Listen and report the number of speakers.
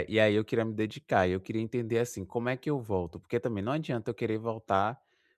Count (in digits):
1